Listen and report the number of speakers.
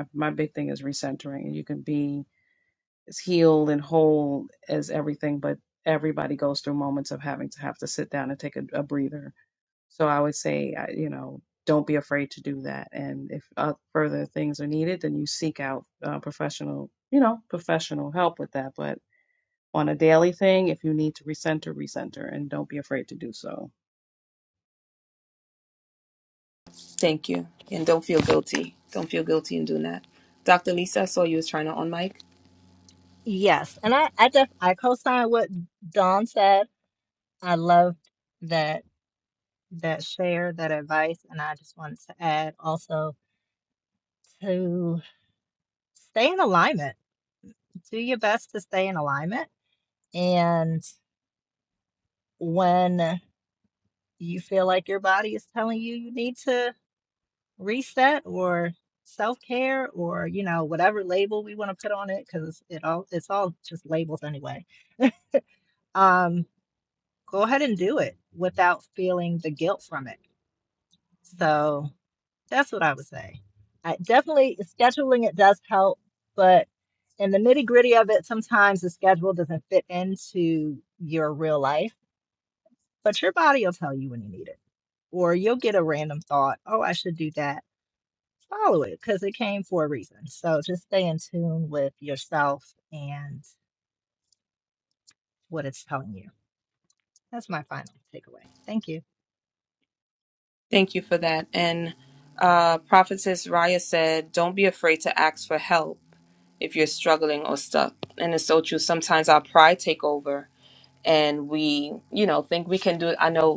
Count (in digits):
3